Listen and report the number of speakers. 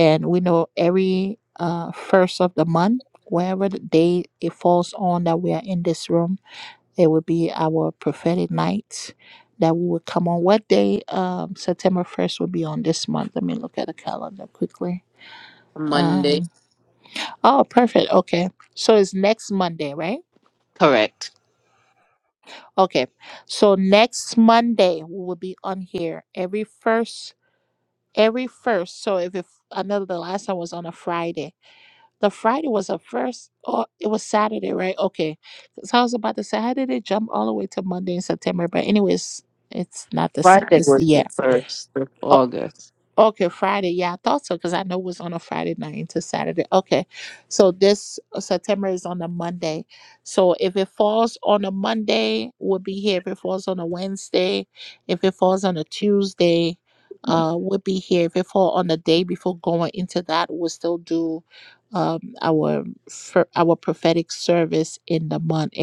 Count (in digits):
2